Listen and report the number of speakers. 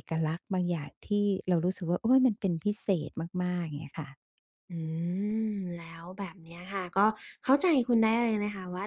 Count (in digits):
2